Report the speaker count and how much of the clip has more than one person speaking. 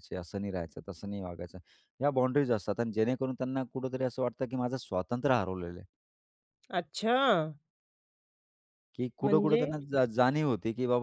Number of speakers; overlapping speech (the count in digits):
2, about 4%